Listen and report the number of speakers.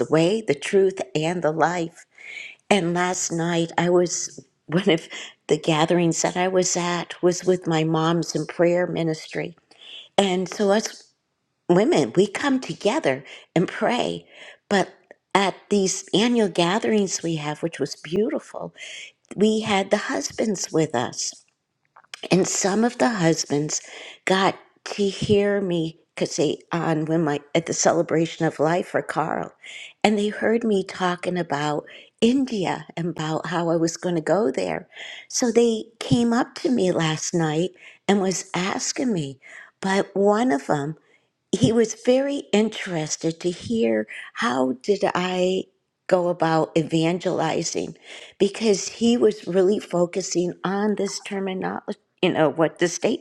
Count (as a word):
one